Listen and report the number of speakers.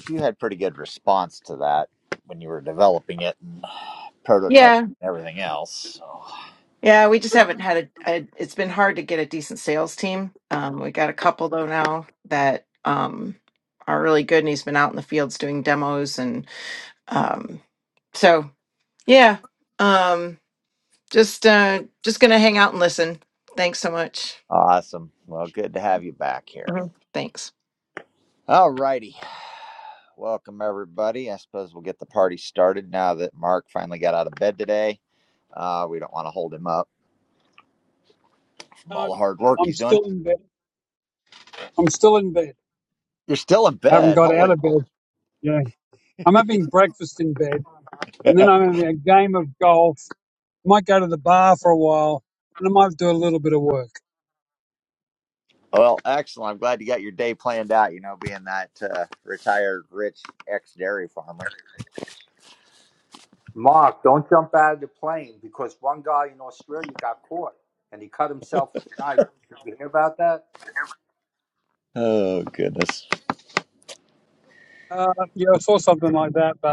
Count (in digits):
4